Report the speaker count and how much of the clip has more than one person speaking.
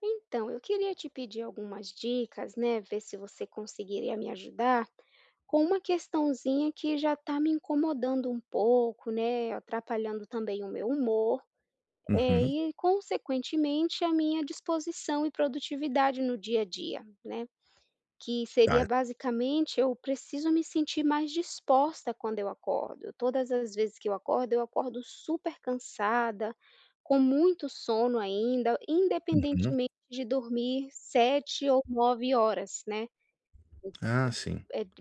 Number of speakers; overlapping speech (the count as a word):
two, about 3%